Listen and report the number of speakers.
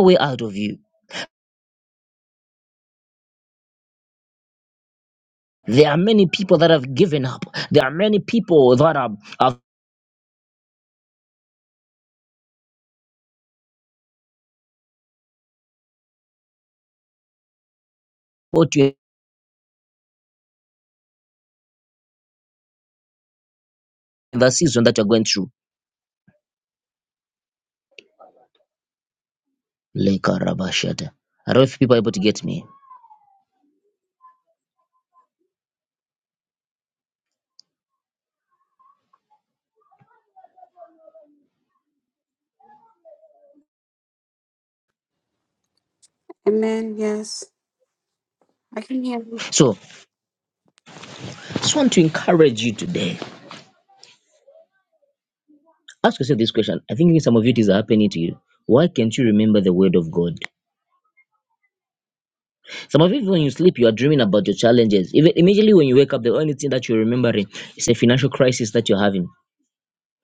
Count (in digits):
2